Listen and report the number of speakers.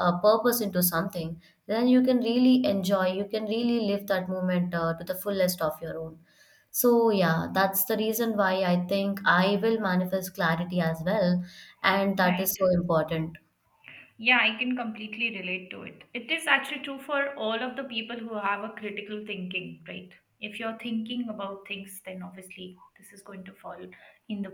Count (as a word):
two